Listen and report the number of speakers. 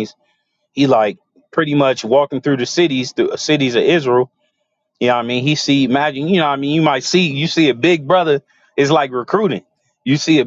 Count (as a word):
one